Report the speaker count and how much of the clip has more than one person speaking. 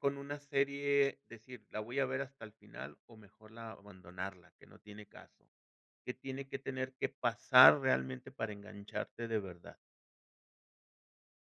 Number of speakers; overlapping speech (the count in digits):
1, no overlap